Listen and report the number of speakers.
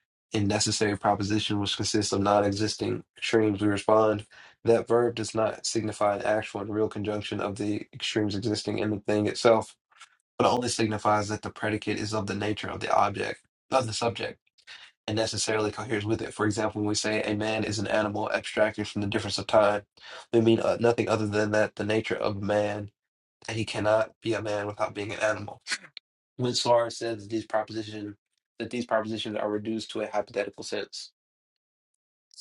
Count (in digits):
1